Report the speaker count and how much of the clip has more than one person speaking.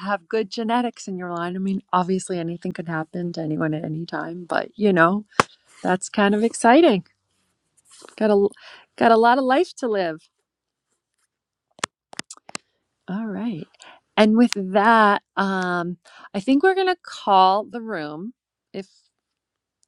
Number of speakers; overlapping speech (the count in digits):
1, no overlap